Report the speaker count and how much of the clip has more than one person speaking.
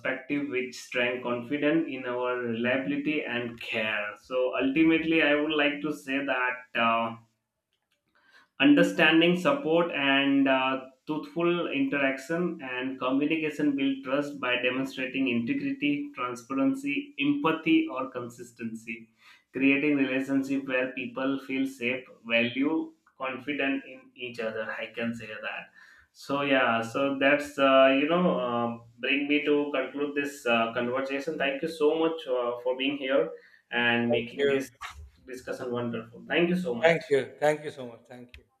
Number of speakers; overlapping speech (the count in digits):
2, about 2%